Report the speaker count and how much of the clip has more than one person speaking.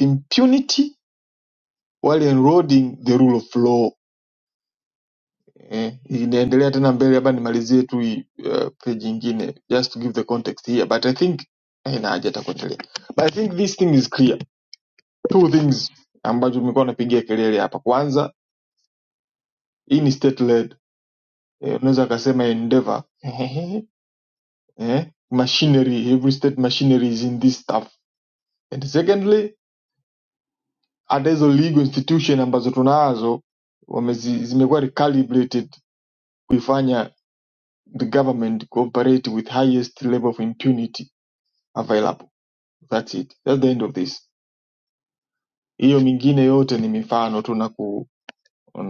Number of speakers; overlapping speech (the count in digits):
1, no overlap